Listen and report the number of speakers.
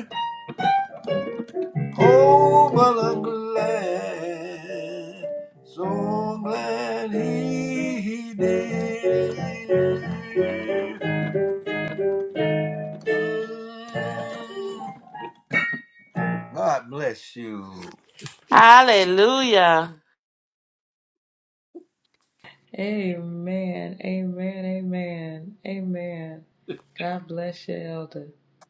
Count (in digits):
3